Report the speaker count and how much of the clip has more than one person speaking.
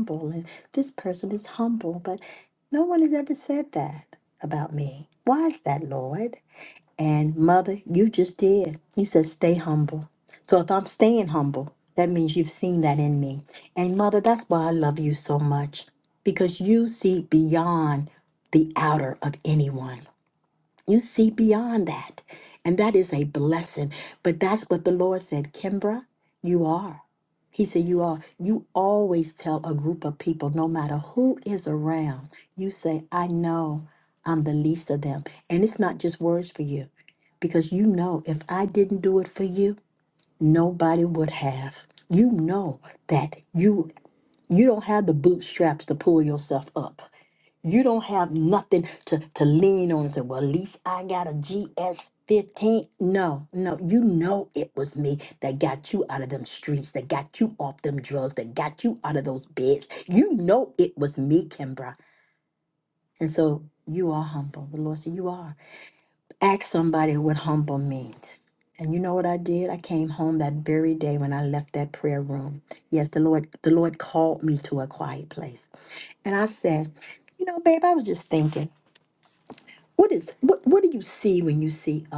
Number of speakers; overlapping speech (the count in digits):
1, no overlap